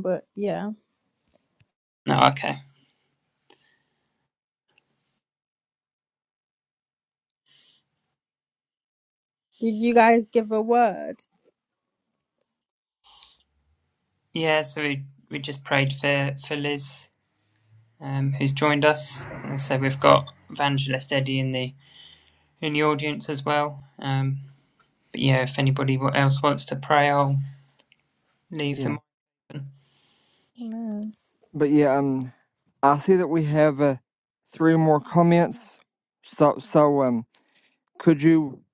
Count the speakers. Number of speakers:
three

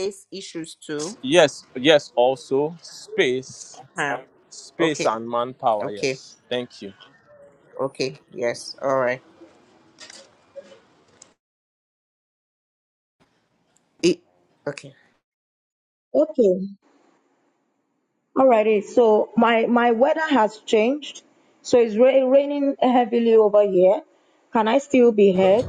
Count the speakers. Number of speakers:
three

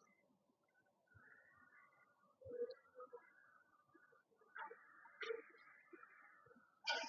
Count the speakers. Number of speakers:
zero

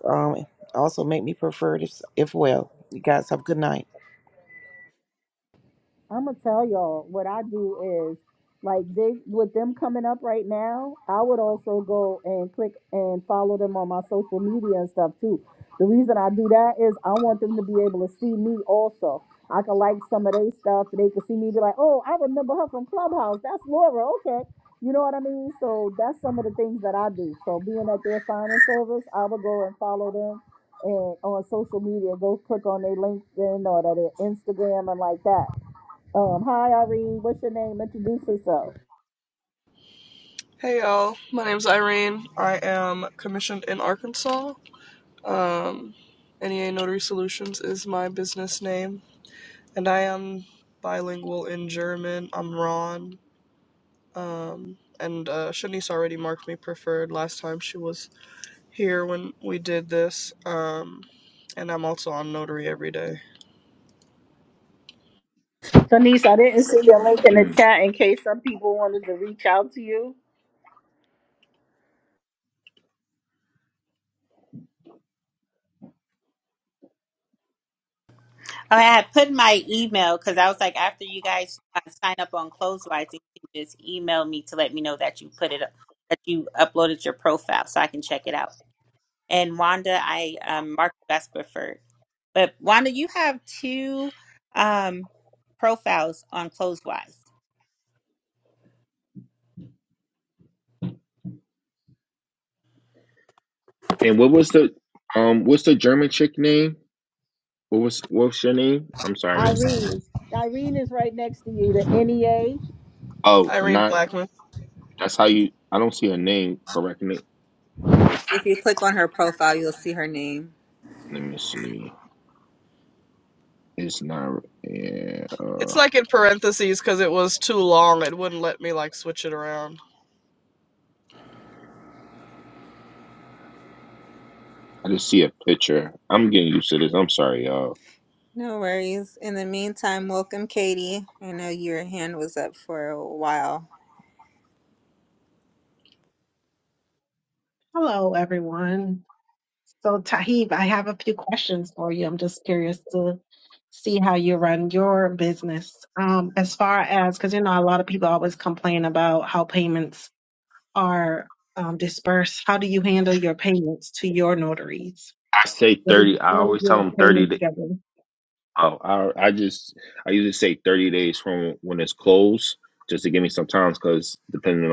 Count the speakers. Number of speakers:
seven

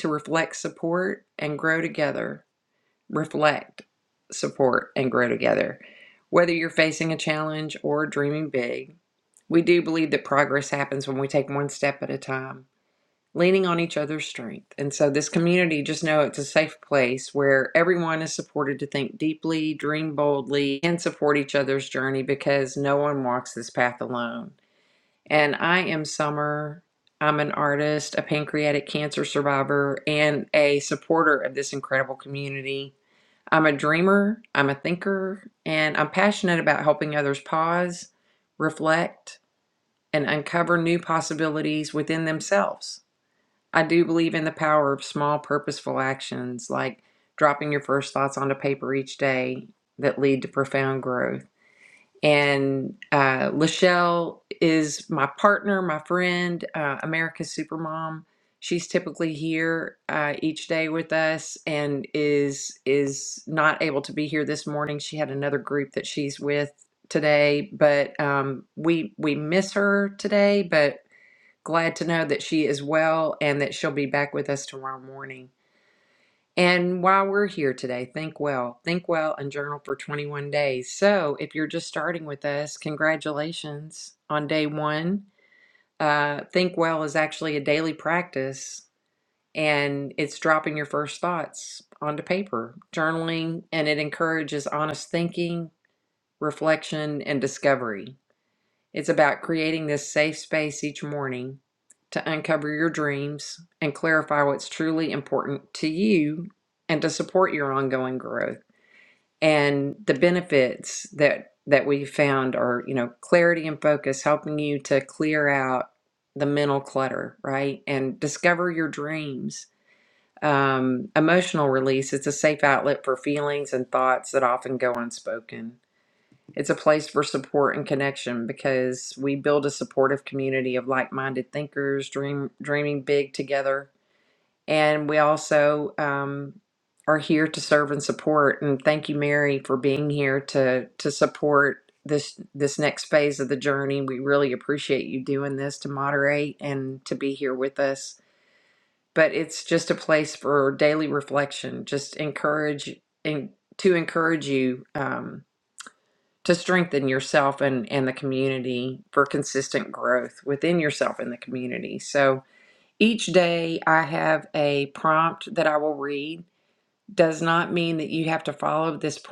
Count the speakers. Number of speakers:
one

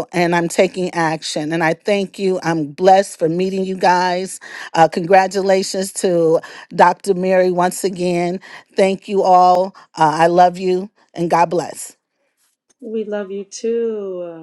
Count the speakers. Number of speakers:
two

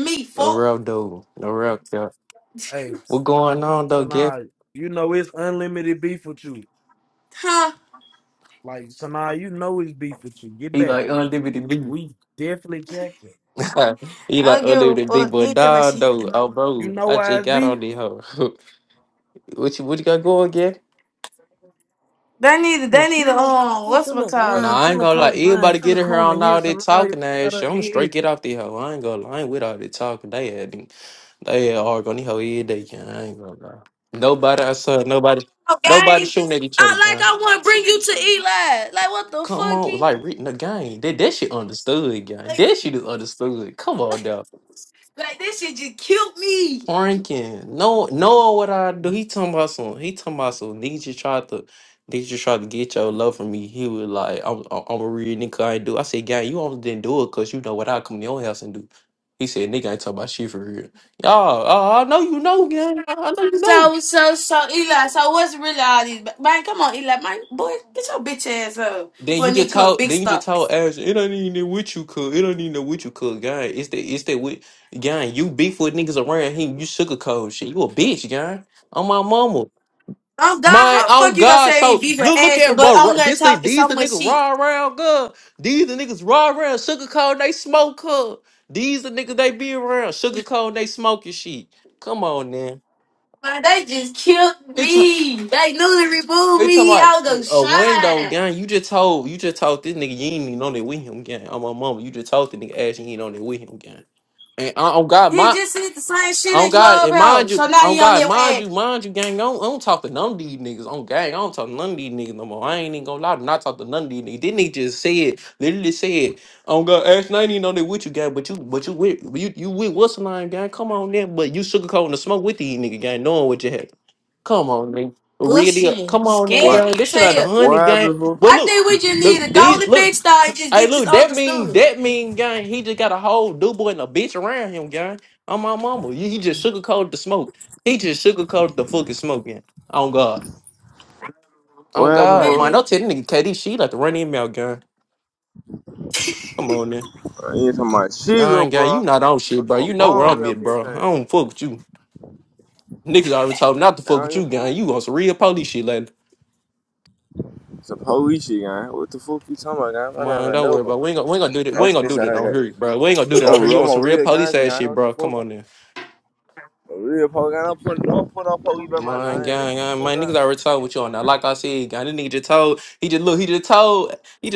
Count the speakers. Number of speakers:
four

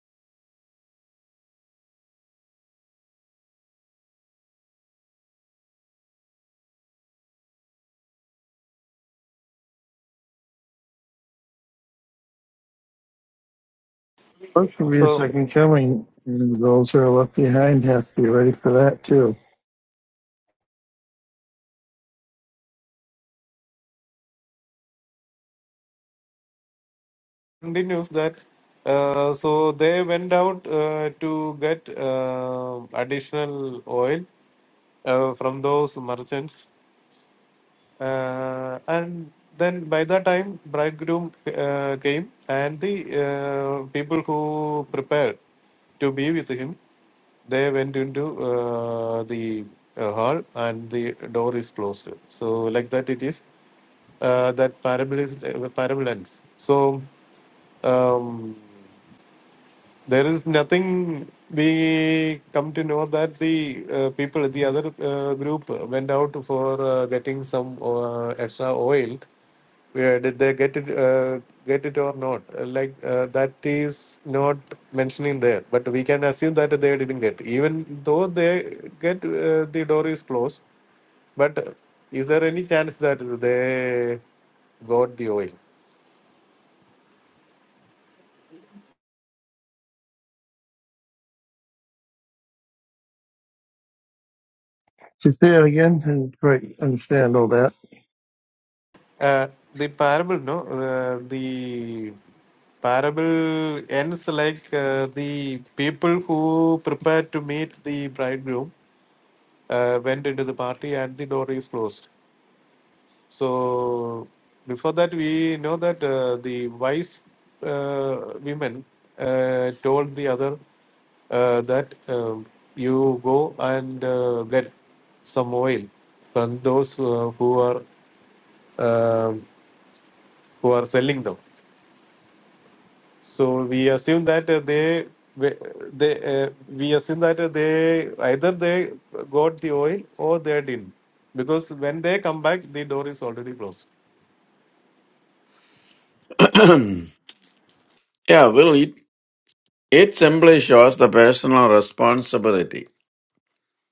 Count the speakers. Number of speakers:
three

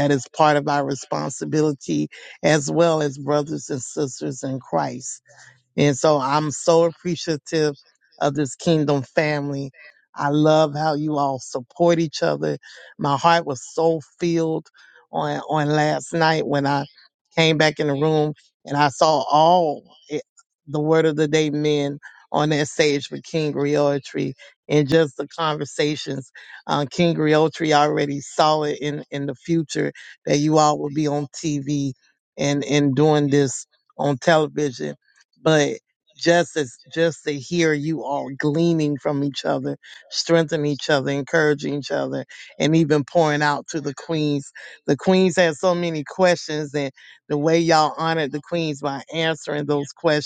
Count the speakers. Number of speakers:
one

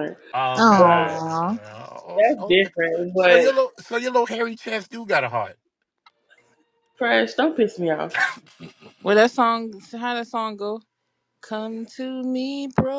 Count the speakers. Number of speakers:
three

